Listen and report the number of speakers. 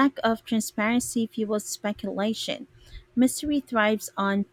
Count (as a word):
one